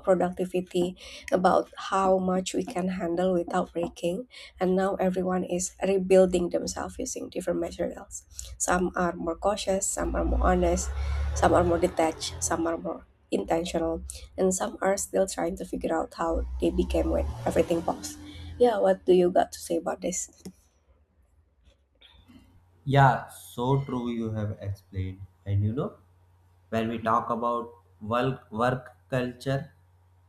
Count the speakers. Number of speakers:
2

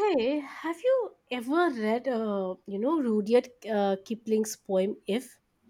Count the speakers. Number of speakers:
1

